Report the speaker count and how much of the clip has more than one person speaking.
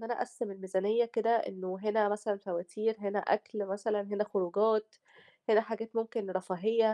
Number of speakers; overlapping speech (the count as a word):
one, no overlap